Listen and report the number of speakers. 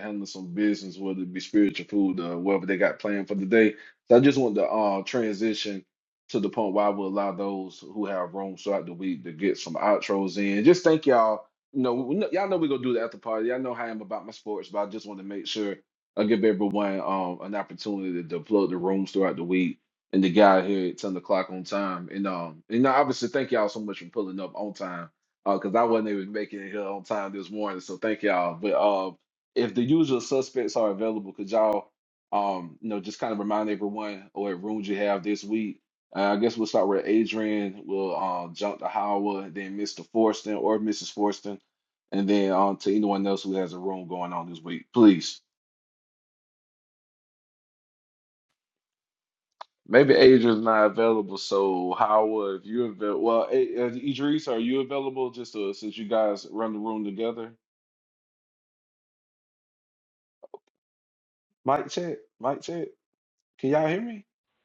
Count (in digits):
1